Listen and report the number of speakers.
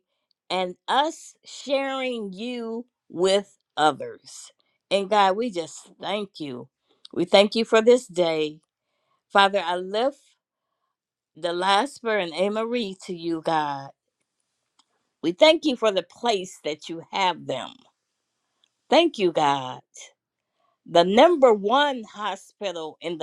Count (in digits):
1